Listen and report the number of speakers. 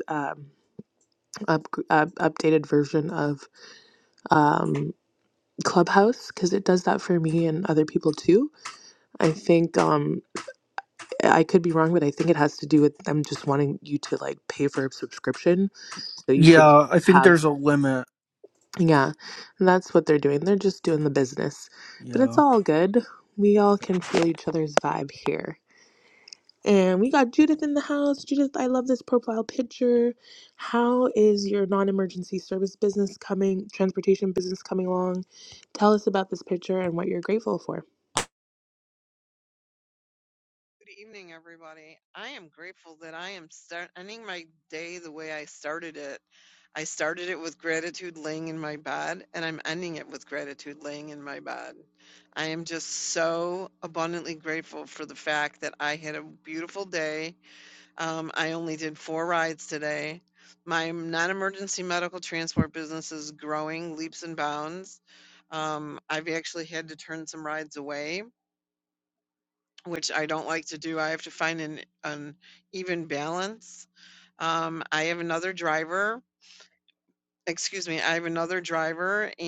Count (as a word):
three